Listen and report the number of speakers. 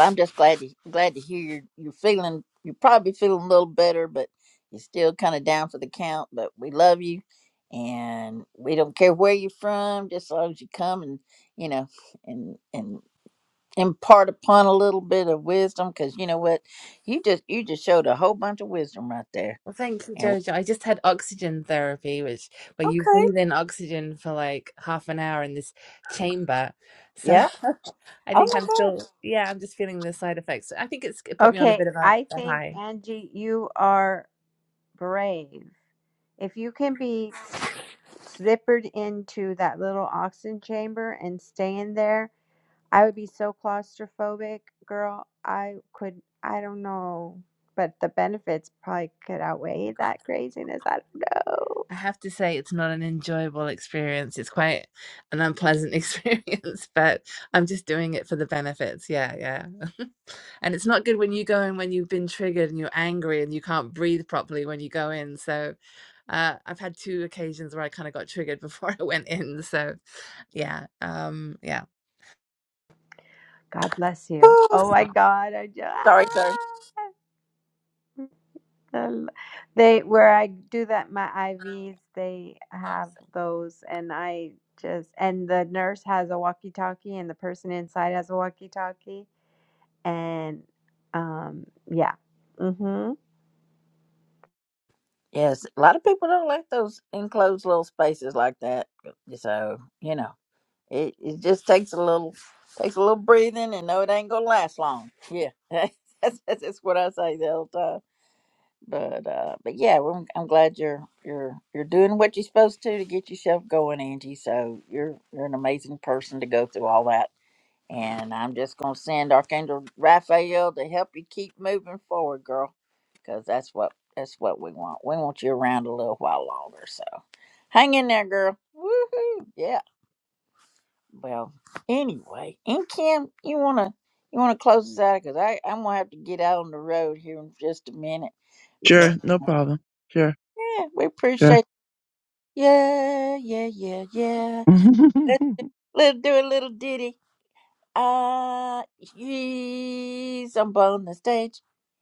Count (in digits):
4